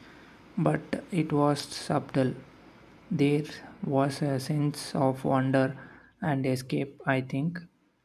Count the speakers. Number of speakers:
one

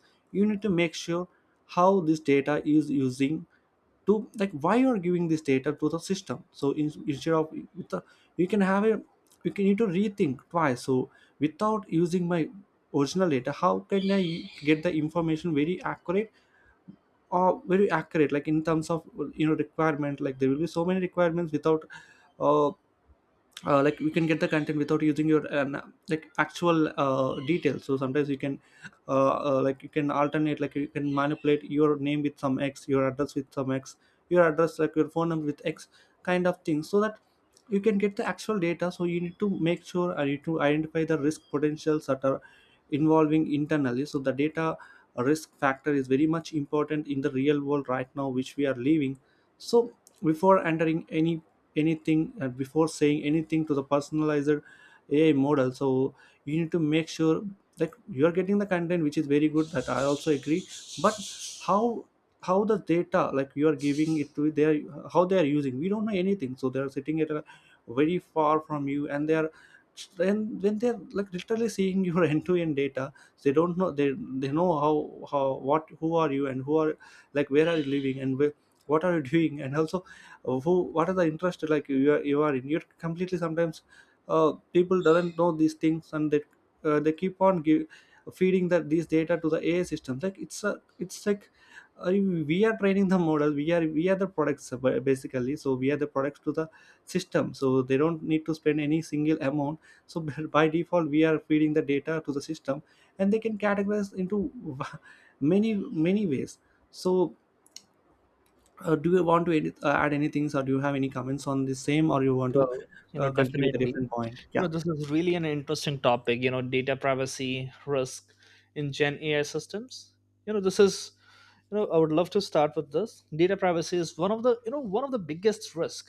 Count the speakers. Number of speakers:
two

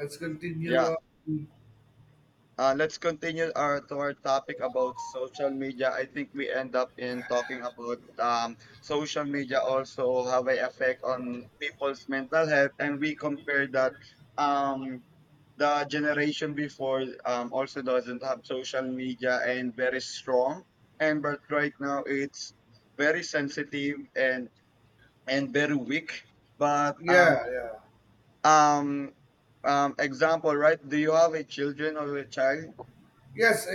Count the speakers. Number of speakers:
two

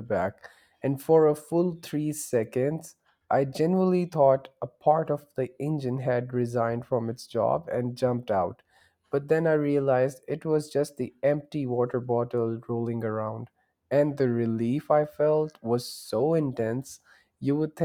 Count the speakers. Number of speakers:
one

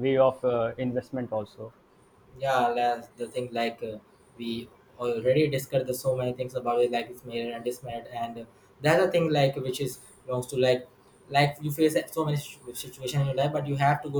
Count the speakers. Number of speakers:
two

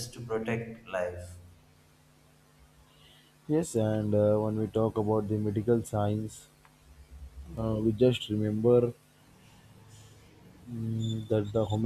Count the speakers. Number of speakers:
two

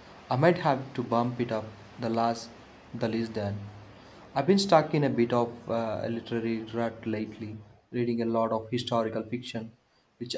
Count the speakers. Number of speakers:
one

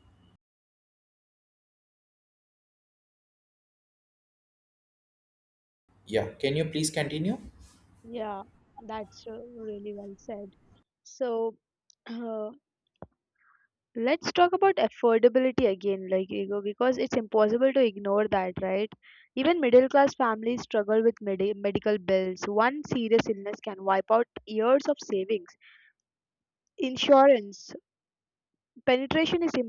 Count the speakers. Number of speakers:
two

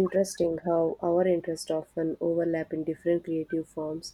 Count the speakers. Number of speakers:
one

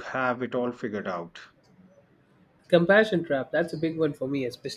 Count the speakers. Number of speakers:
two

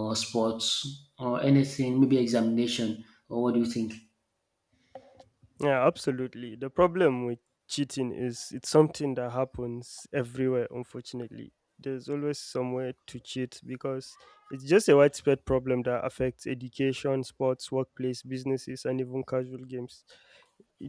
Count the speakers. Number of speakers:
two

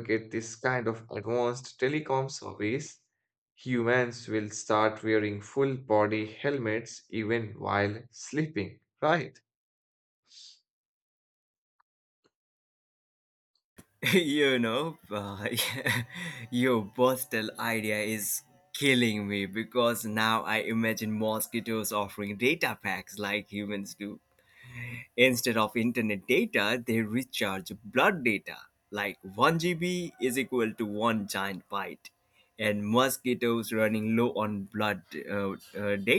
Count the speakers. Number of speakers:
two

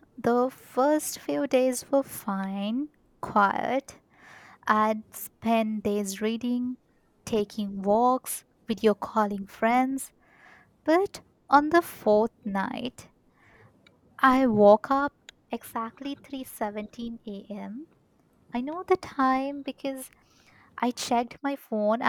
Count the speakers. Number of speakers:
one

